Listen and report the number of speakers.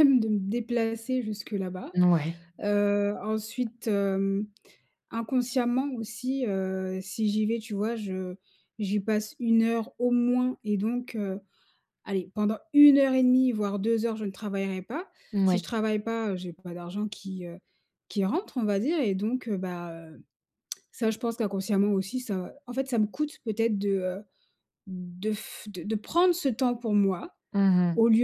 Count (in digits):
2